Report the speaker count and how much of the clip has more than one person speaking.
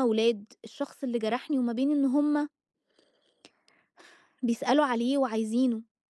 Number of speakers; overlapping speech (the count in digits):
1, no overlap